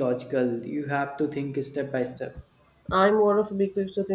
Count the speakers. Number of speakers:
2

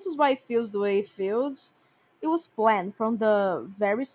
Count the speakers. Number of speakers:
1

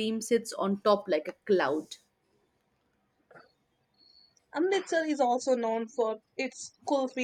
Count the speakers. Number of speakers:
2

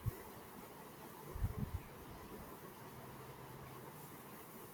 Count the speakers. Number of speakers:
0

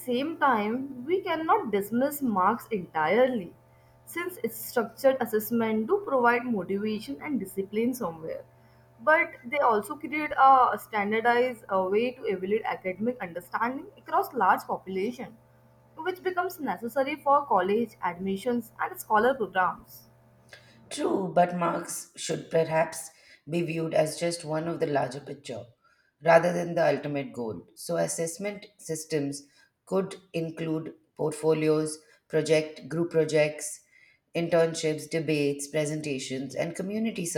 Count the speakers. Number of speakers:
2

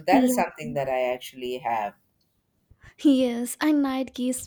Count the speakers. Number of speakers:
2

